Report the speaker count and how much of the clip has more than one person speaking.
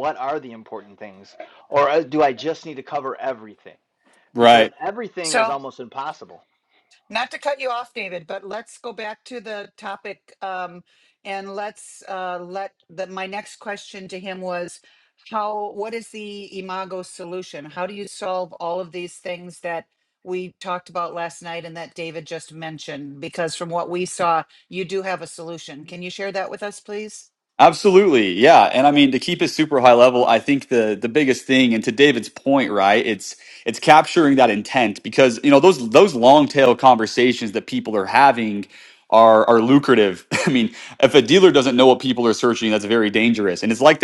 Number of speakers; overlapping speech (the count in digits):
3, about 1%